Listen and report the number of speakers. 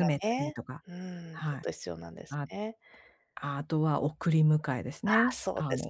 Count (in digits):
2